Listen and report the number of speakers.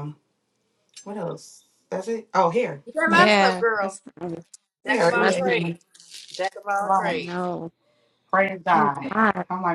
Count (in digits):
3